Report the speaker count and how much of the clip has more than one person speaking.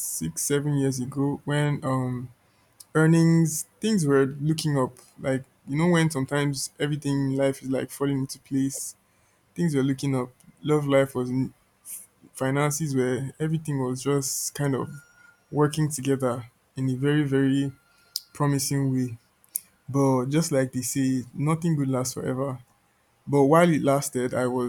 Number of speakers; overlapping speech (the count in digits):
1, no overlap